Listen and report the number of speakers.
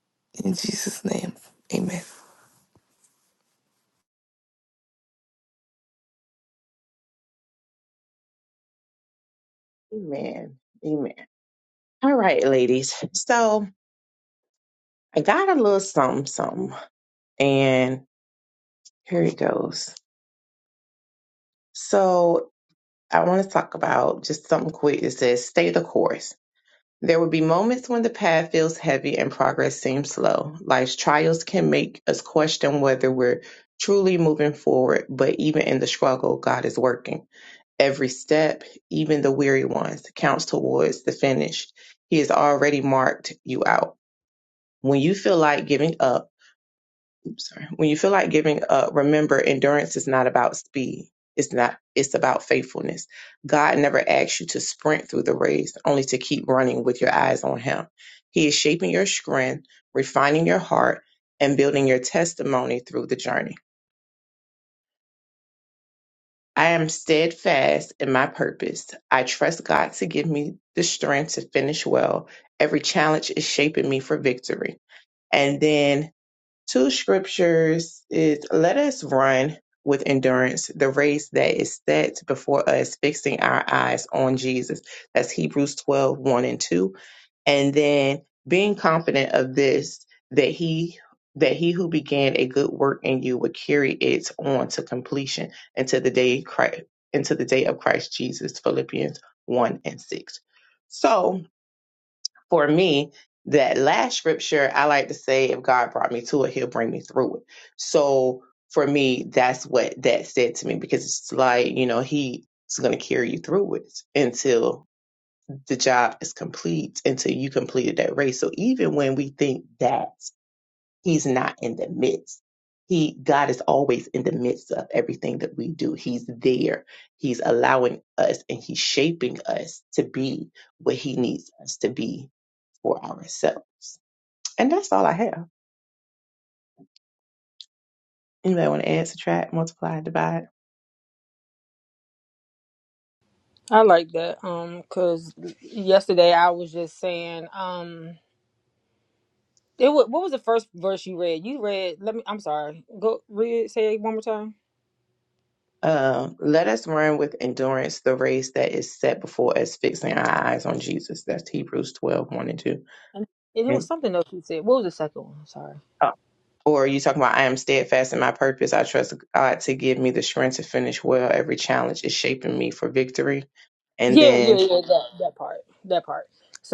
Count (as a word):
three